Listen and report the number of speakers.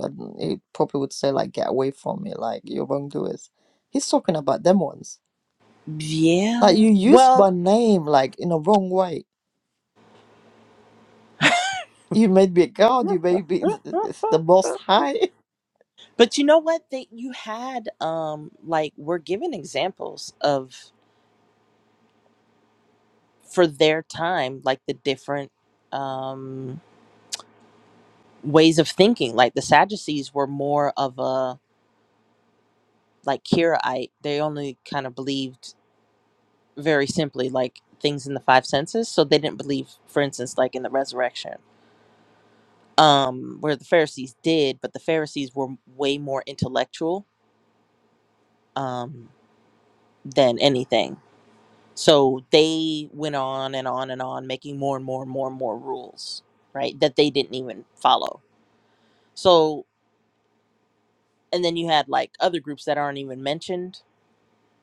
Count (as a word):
two